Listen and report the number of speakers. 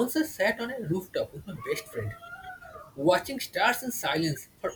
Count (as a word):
one